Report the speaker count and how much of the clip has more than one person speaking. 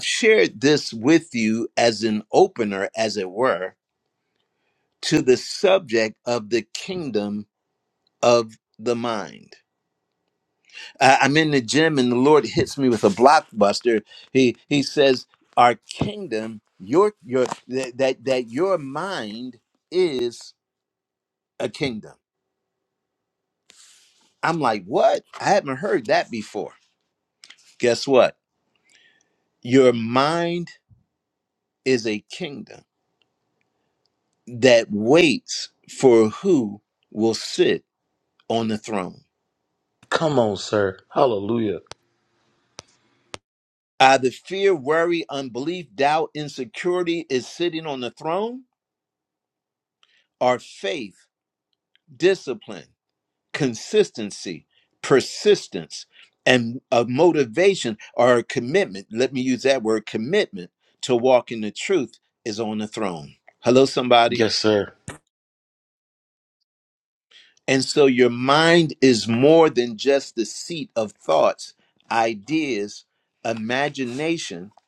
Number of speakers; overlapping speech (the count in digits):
2, under 1%